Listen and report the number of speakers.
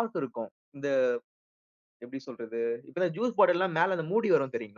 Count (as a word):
one